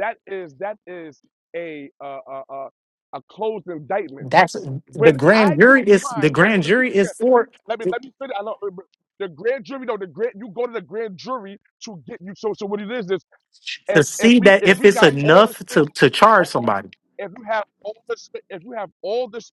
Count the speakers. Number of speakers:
two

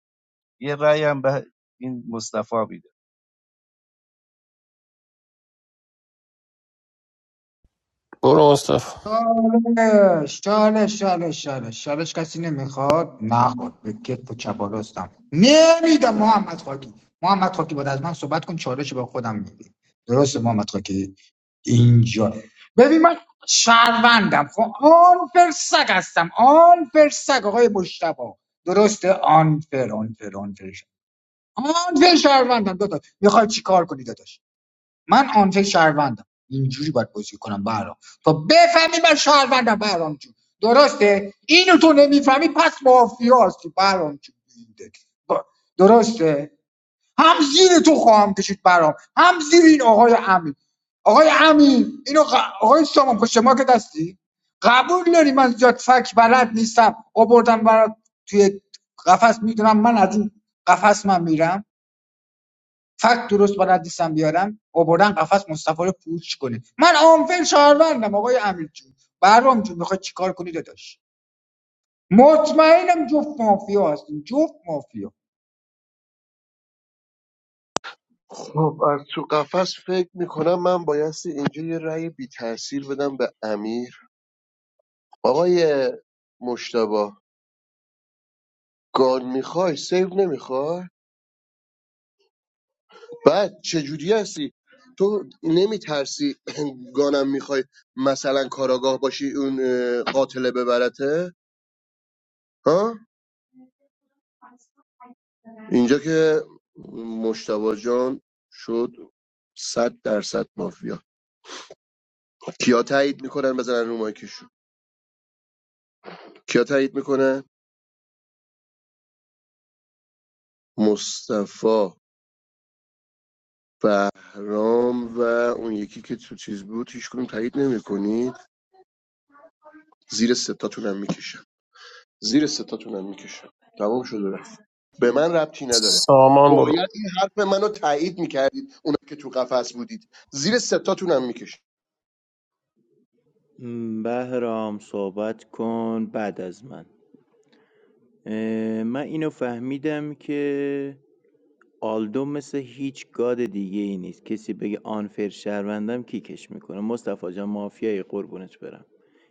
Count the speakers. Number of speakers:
five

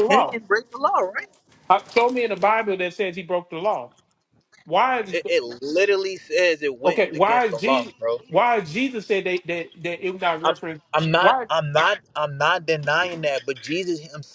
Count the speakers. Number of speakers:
two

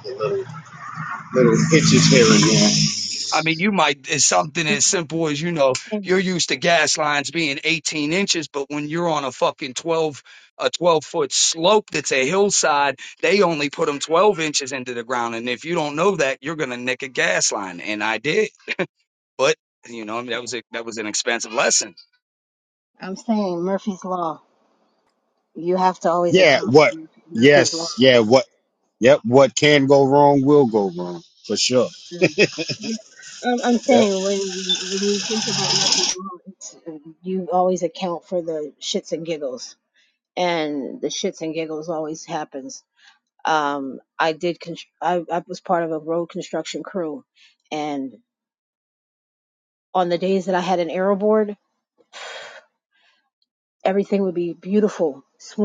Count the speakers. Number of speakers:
three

